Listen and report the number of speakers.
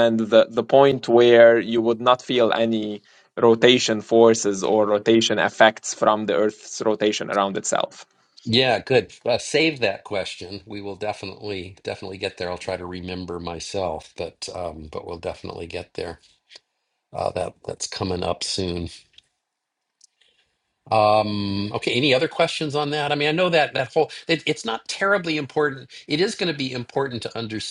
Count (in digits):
2